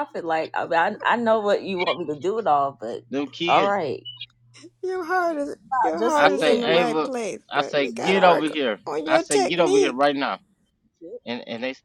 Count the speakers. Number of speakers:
three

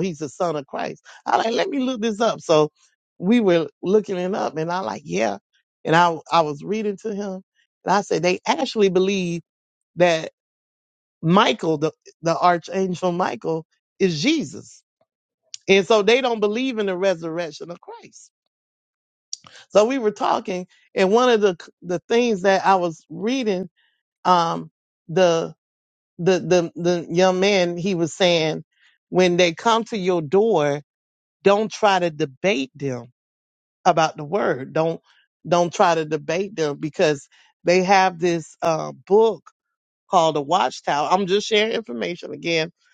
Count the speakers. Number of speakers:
one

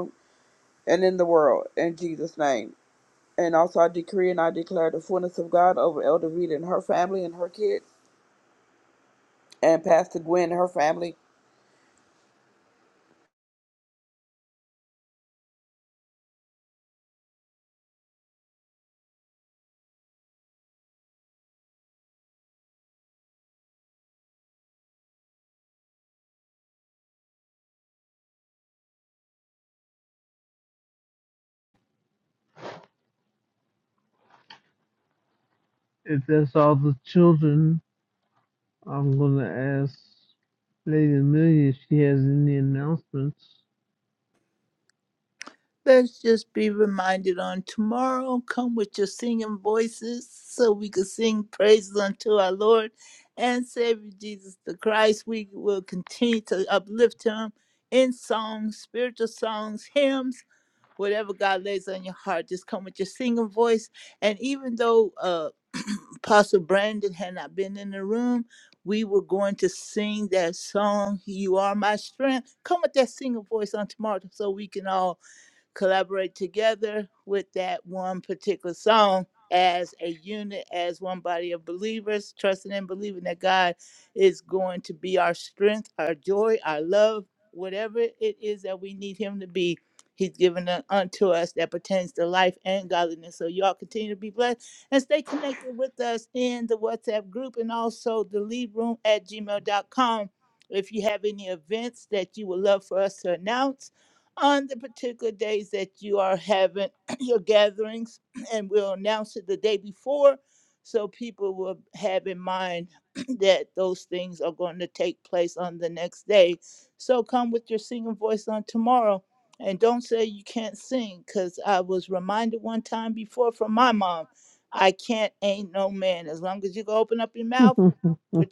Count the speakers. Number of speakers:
three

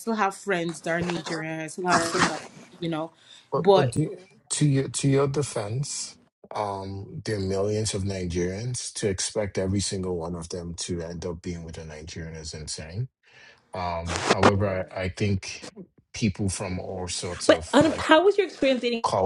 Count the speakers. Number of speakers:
three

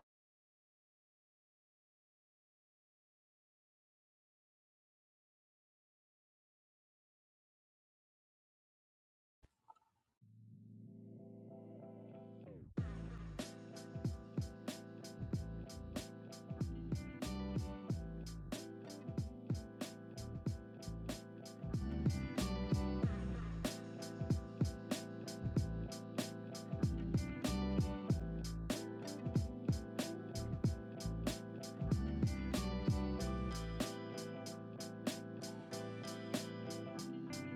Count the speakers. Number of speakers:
zero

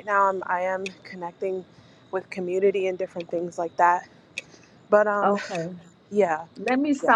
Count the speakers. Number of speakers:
two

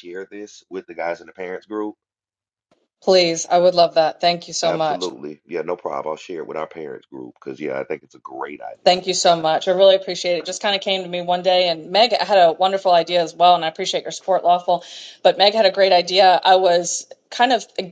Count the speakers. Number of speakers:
two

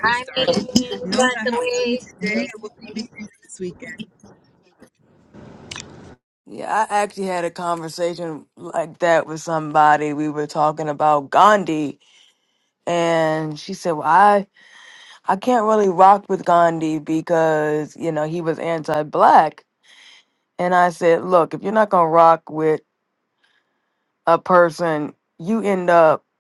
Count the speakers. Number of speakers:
three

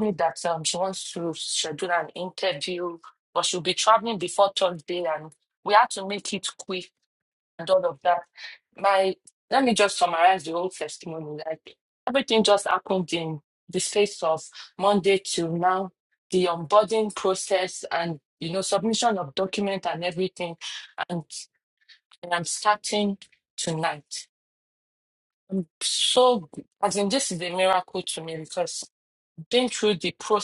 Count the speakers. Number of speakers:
one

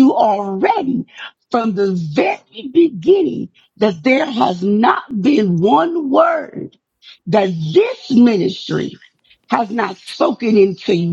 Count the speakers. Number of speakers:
one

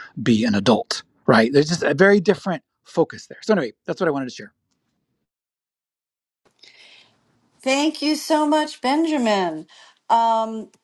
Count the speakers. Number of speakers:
two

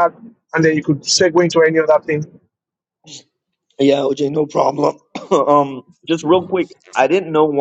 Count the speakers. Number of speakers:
two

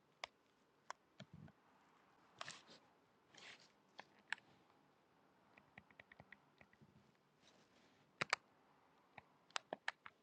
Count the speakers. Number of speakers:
zero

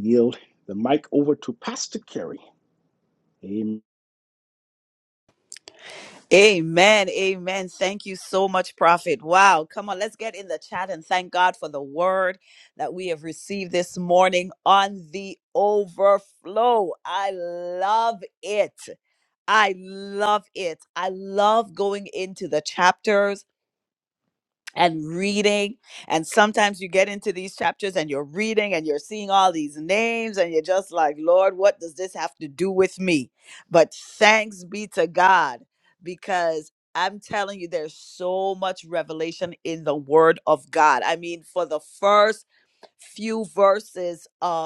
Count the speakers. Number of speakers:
two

